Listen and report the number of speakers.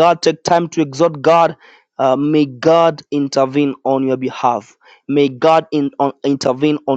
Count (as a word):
one